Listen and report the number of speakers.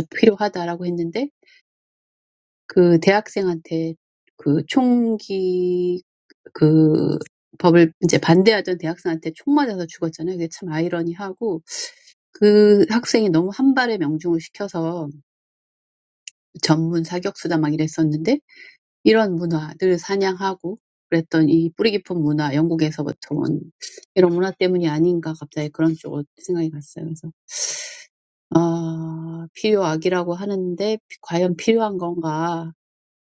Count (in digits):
1